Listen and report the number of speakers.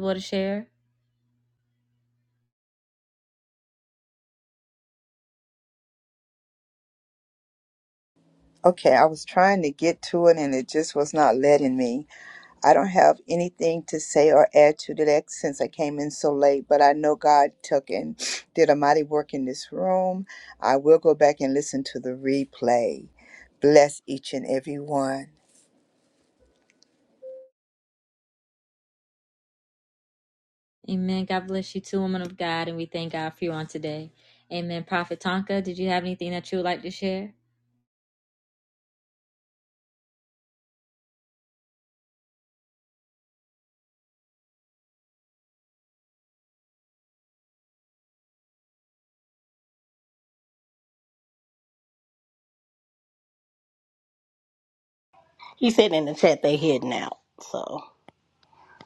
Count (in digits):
3